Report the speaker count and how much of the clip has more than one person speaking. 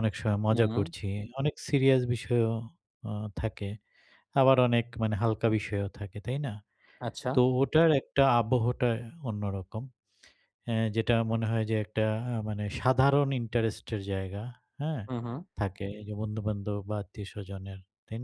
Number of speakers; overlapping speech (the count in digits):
2, about 2%